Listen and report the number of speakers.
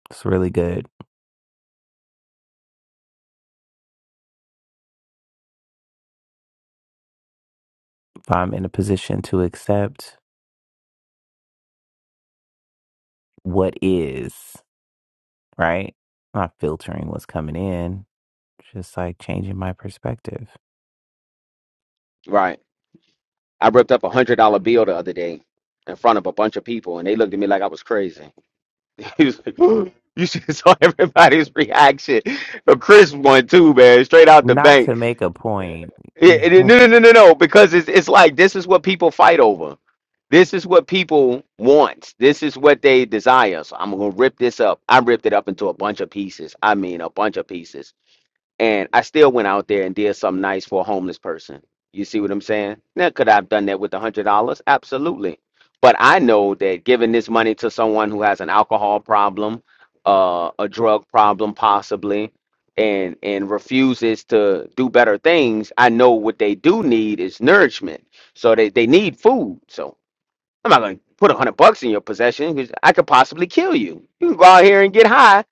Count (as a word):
two